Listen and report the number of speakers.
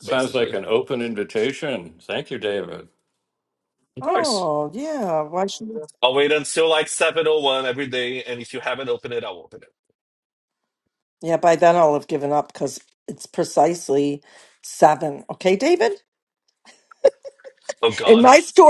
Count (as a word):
three